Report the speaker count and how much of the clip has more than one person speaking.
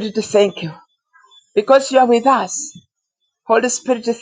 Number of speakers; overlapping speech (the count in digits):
1, no overlap